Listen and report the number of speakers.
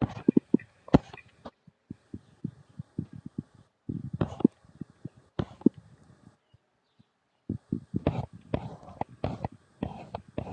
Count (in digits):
0